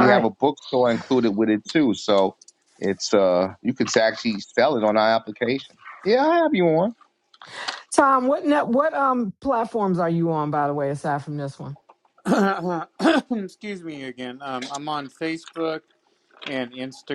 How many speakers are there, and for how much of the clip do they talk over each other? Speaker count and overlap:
3, about 2%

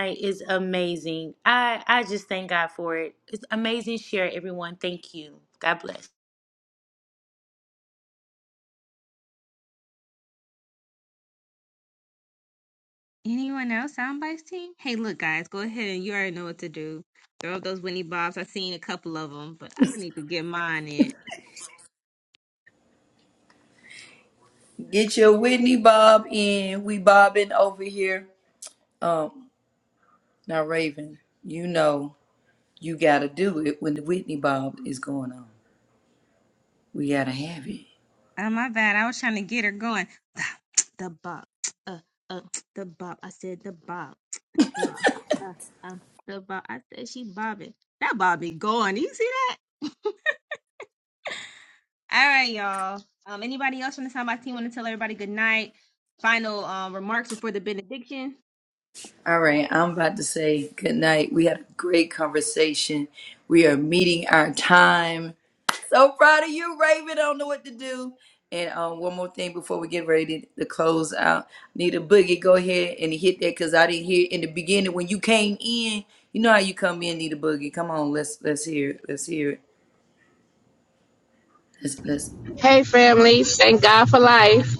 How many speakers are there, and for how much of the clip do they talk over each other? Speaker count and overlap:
4, no overlap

